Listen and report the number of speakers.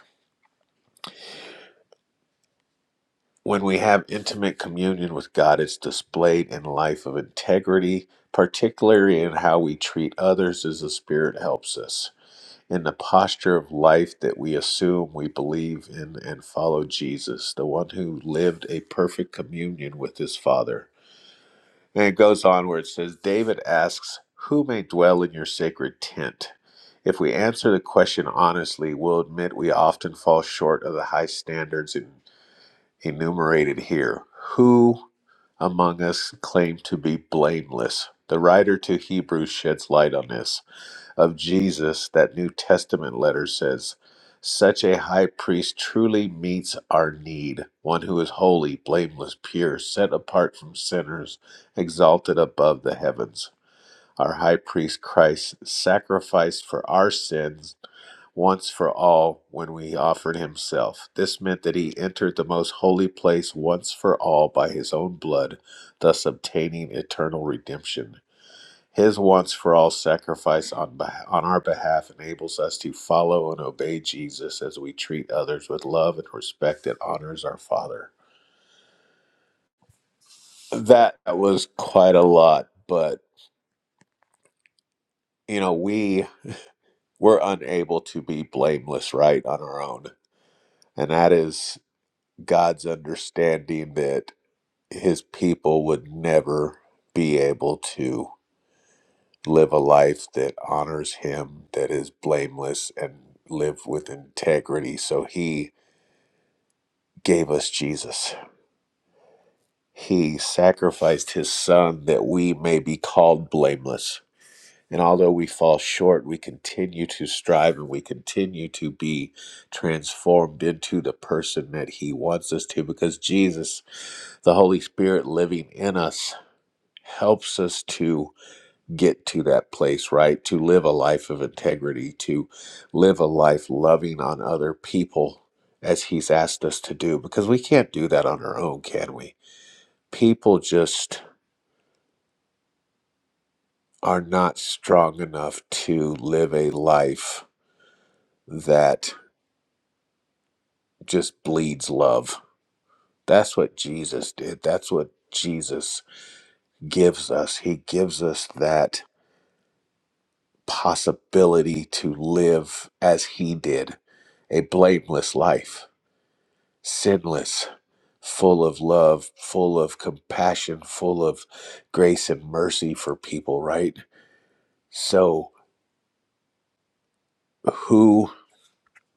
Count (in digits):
1